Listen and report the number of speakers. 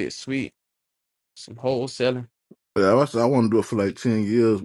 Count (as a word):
two